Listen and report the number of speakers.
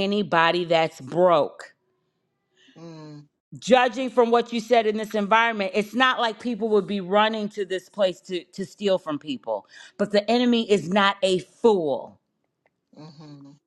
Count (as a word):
two